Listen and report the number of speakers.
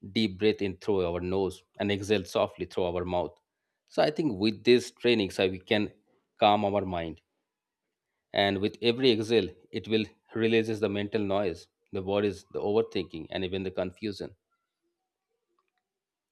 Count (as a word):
one